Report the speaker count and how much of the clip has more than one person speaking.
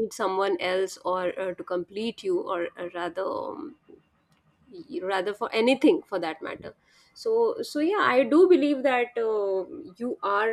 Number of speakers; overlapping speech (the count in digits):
1, no overlap